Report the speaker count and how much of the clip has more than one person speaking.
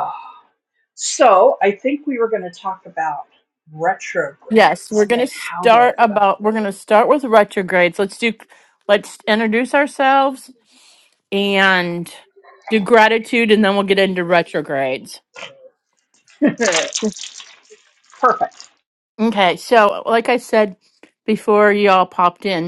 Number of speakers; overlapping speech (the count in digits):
2, about 3%